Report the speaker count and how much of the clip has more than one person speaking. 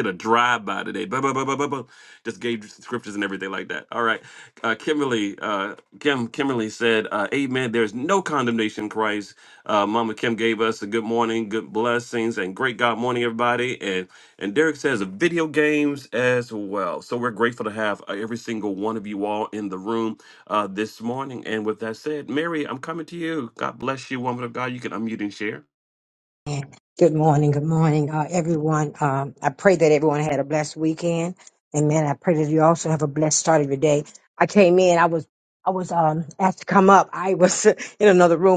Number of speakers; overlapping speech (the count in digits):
2, no overlap